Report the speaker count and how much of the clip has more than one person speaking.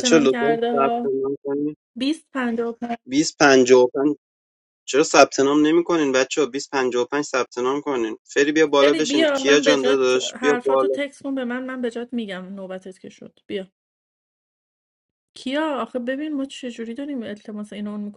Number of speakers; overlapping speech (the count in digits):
2, about 16%